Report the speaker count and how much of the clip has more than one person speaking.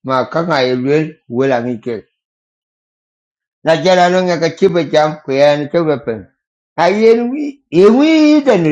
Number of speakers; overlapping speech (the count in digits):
1, no overlap